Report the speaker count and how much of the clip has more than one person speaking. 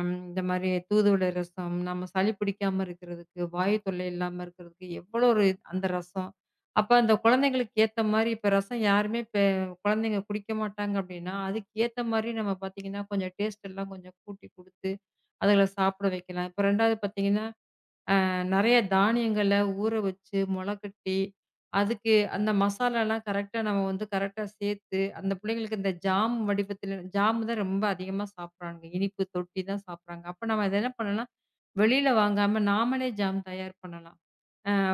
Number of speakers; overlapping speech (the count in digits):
1, no overlap